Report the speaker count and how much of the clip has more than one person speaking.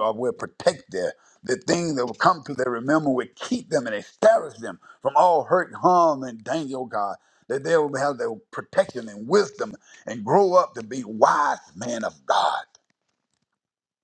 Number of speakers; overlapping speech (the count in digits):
1, no overlap